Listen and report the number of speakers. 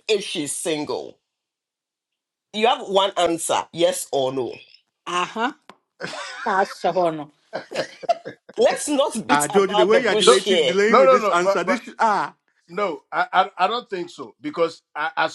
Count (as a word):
four